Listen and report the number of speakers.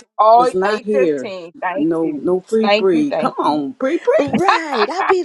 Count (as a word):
three